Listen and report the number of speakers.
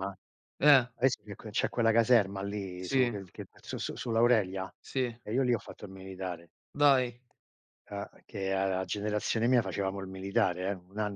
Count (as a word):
two